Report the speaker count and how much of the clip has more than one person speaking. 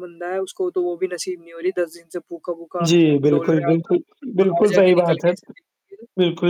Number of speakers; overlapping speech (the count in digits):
2, about 27%